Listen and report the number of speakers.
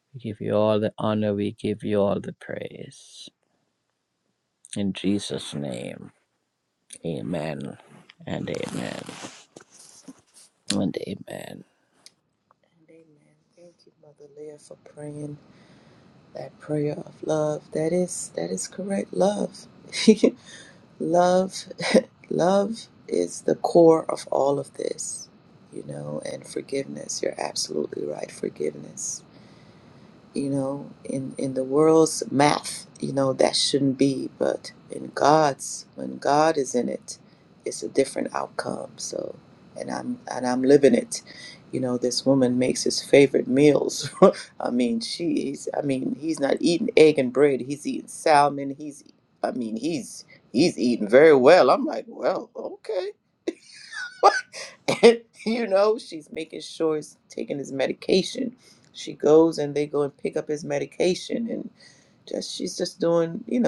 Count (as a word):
two